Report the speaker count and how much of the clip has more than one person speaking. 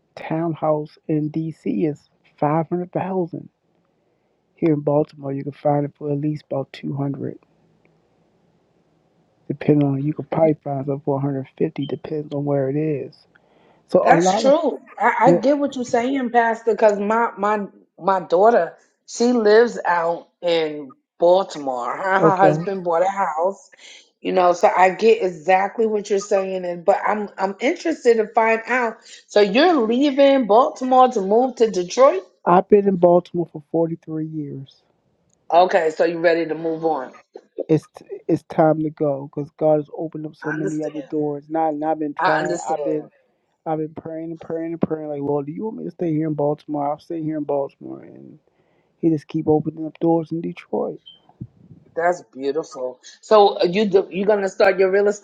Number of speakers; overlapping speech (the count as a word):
two, about 5%